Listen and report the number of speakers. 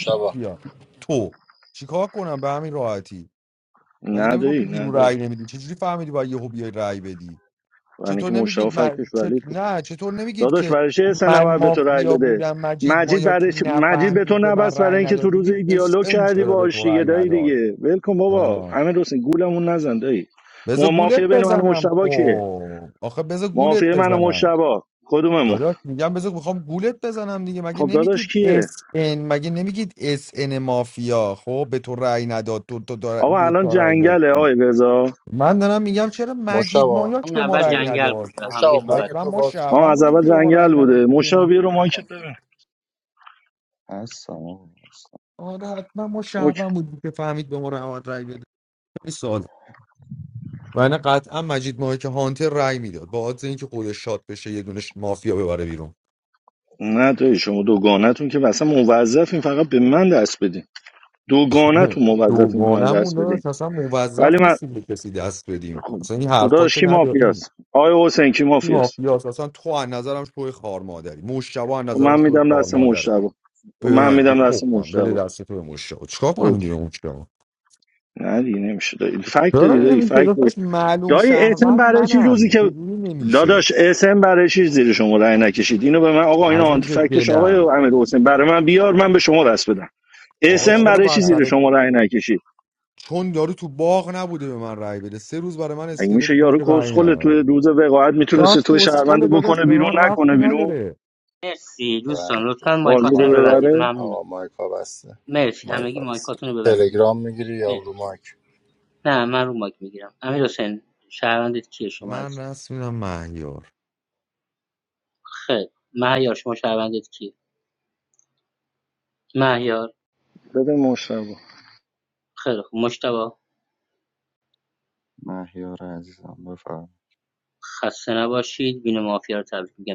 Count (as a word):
five